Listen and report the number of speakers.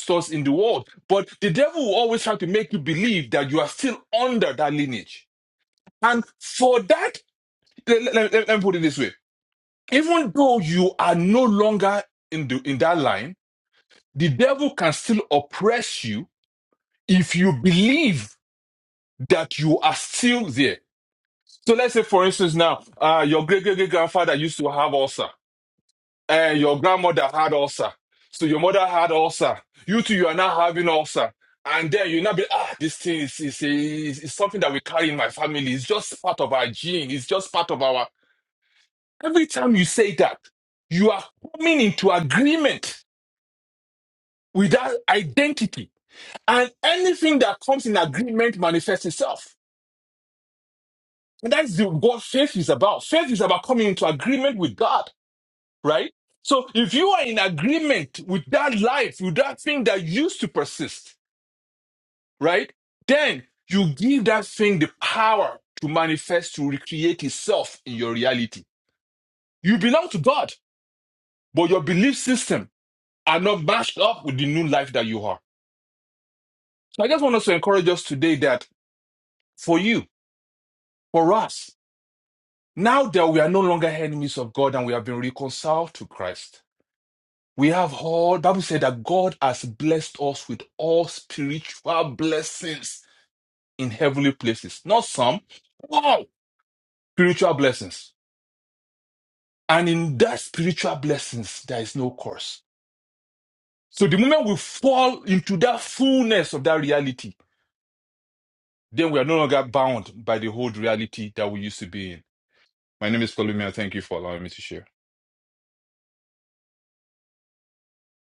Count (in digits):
1